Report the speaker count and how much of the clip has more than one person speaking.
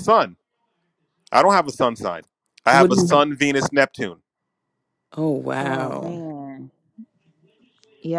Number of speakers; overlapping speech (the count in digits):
3, about 12%